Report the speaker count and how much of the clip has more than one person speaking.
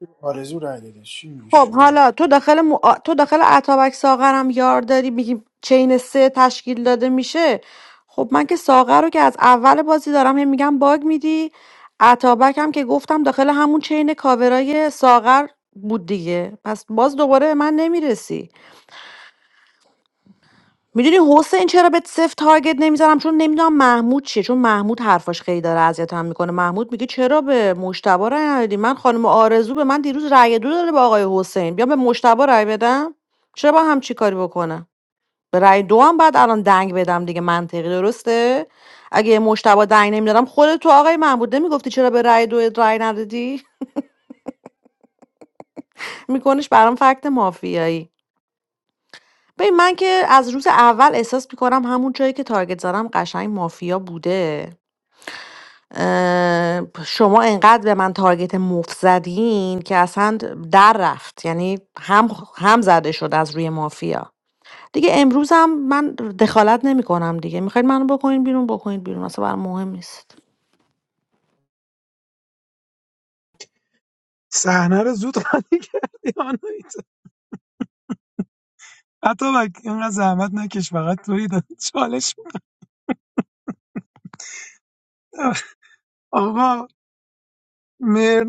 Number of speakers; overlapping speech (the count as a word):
three, about 1%